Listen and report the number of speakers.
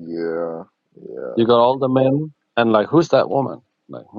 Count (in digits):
2